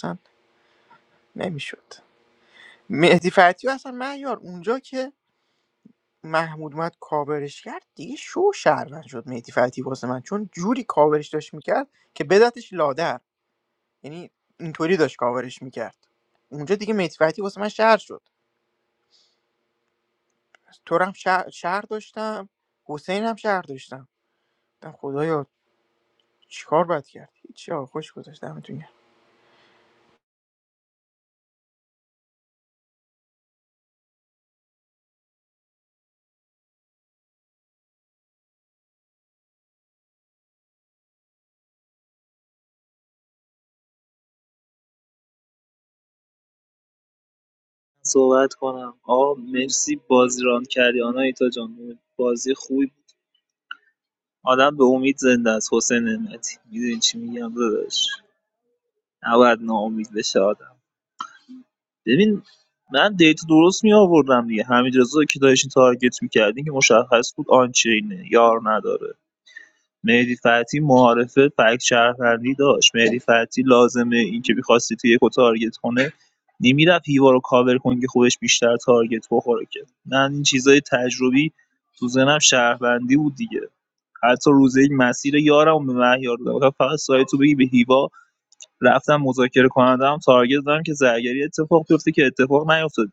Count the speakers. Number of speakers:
two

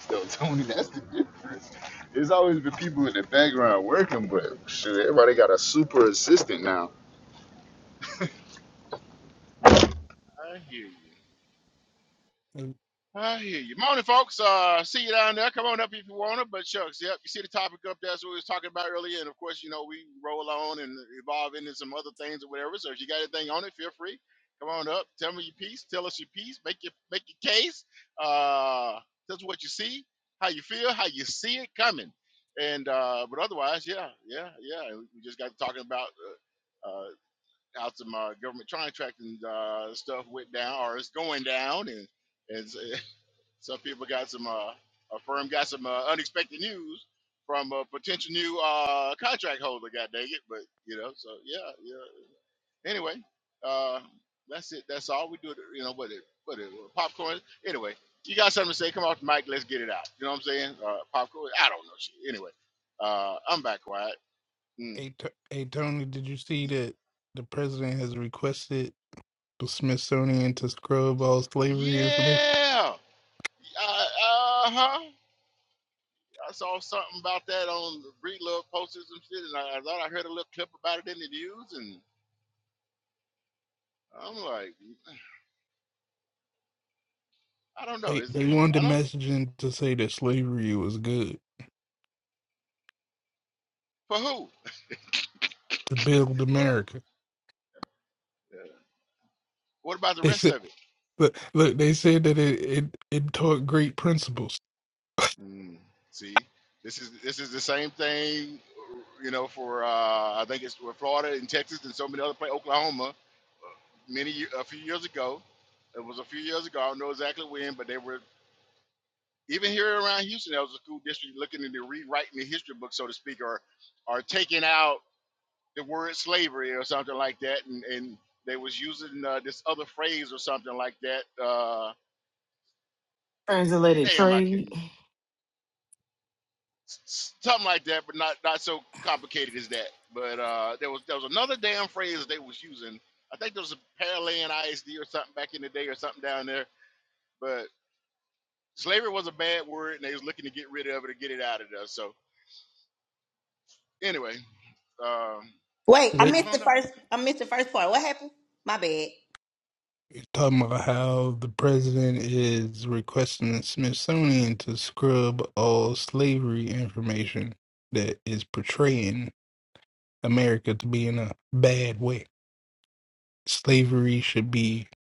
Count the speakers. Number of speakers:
five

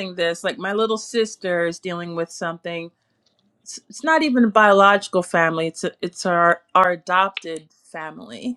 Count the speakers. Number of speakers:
one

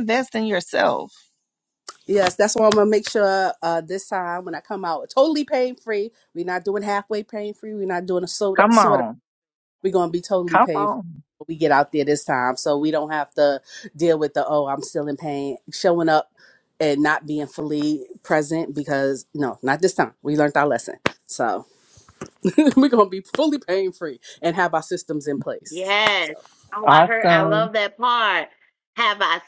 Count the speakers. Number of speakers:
three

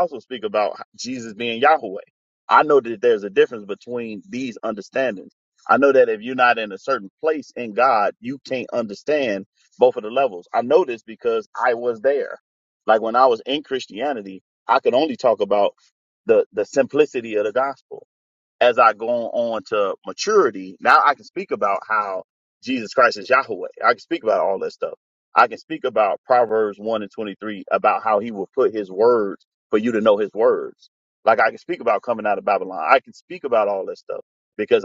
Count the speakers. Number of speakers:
one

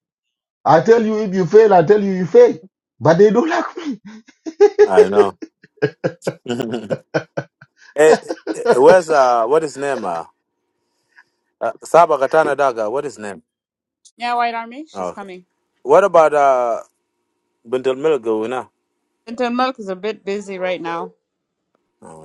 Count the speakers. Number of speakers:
three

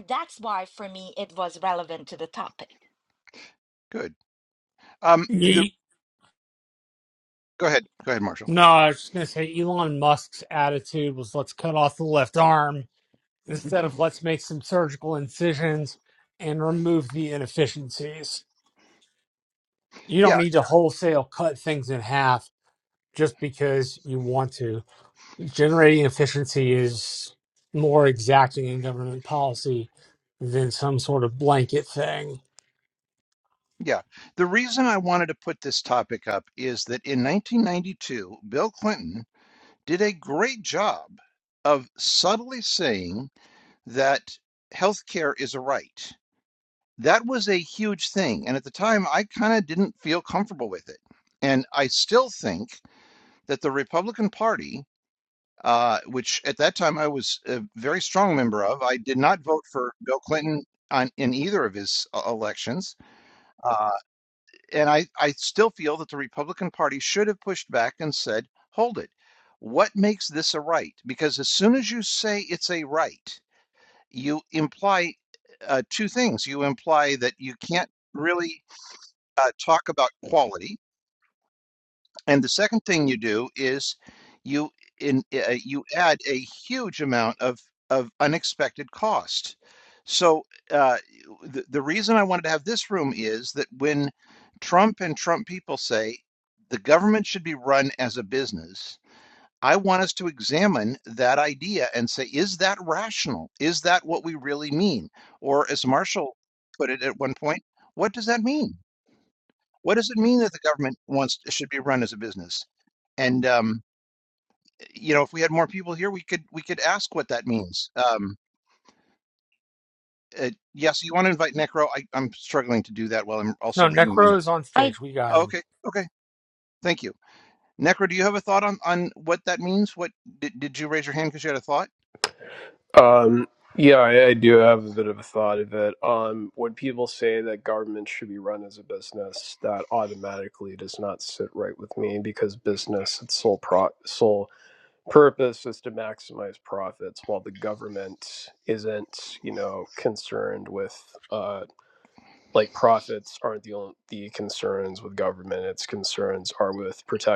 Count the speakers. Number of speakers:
four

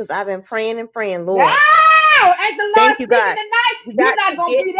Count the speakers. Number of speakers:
two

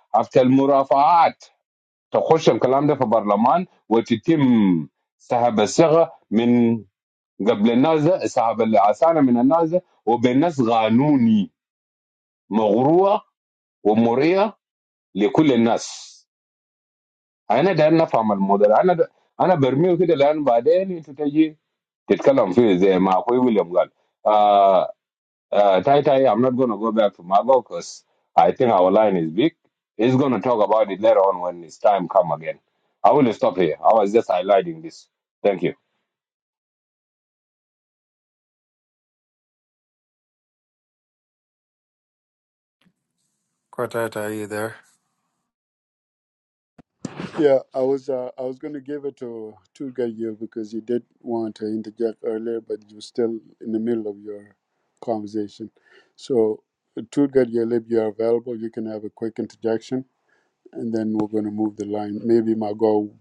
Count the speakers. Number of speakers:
three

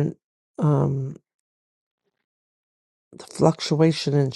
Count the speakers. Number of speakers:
one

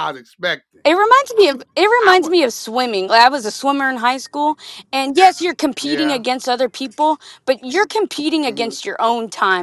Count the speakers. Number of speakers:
two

